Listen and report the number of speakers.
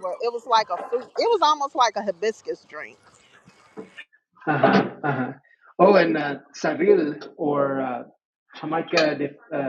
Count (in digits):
2